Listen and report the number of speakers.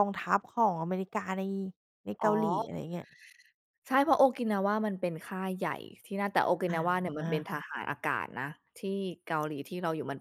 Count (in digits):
2